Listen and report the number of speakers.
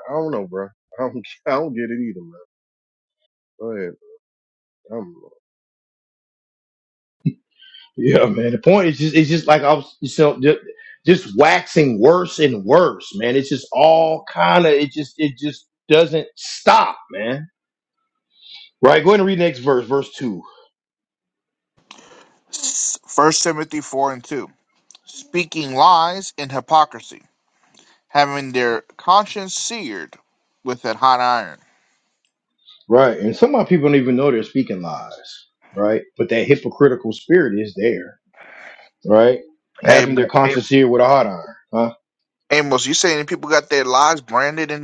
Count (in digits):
3